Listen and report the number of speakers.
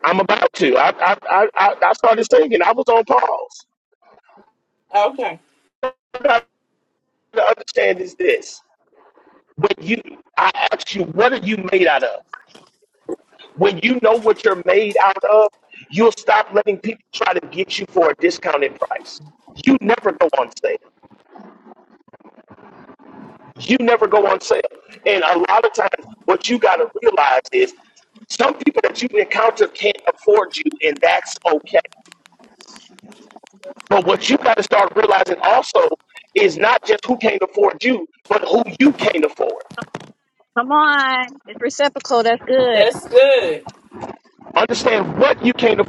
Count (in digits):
3